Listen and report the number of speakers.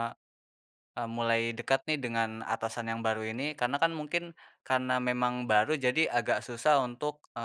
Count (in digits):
1